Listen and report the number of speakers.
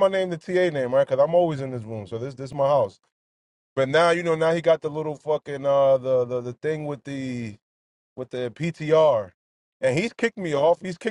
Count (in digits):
1